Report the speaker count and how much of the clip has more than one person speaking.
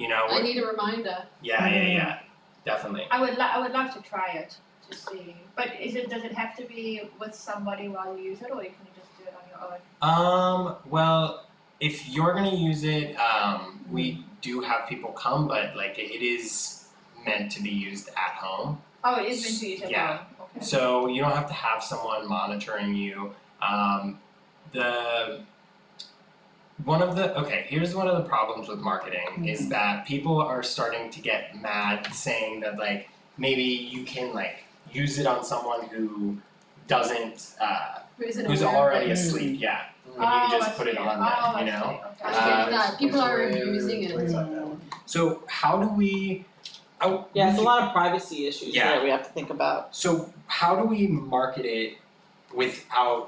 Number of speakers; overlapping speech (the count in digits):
5, about 9%